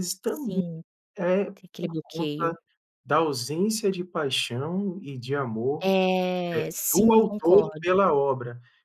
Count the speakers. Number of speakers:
2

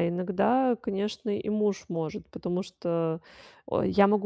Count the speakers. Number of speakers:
1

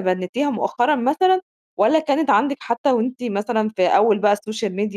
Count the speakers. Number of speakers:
1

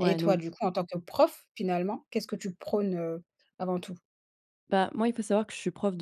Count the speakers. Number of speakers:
2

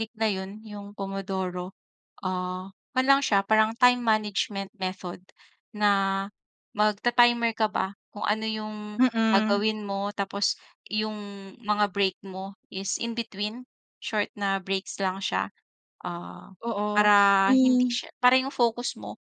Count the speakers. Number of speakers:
2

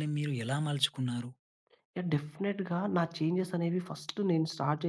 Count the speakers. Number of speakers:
2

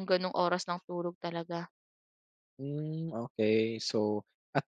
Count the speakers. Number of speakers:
2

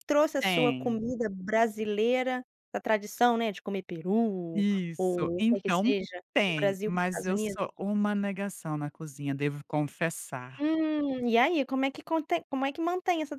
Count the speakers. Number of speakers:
2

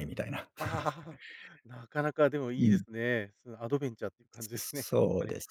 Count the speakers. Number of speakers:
2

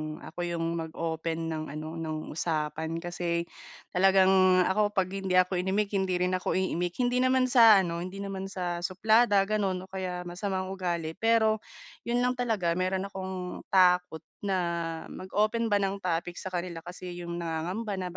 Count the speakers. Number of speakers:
1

